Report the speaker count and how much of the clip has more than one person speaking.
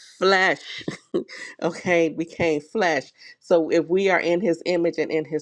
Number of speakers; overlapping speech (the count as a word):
one, no overlap